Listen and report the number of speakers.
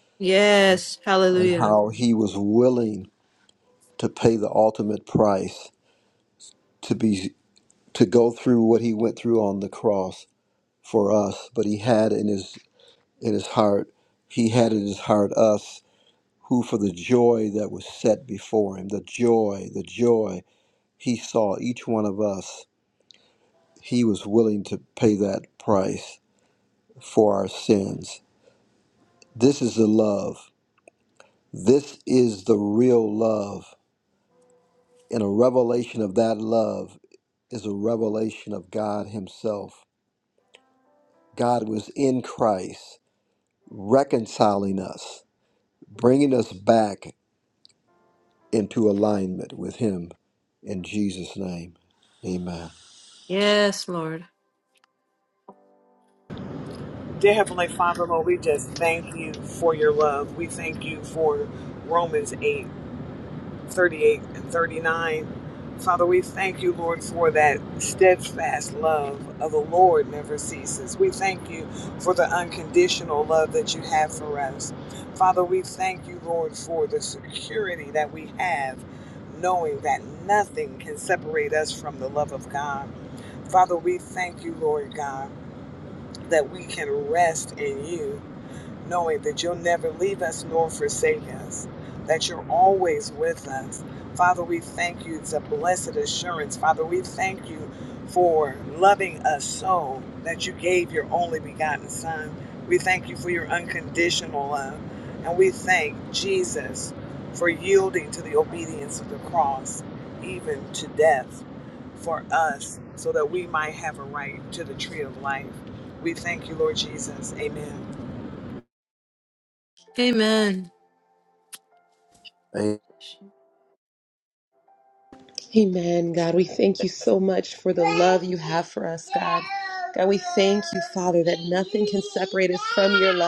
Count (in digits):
4